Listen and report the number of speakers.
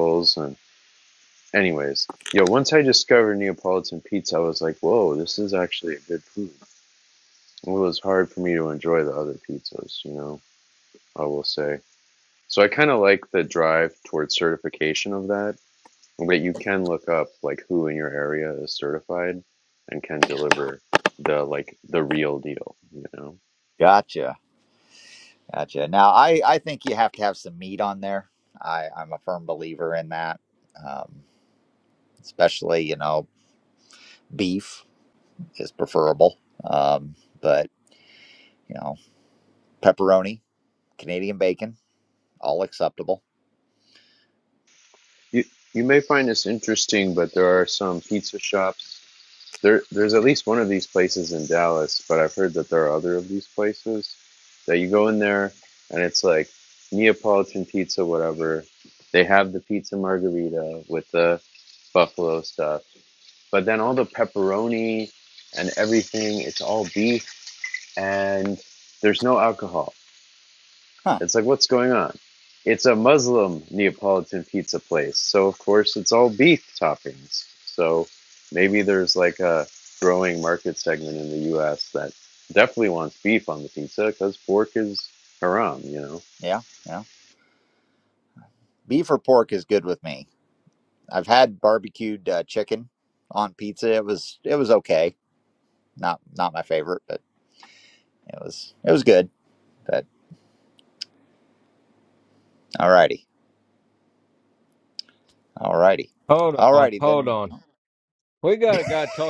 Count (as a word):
three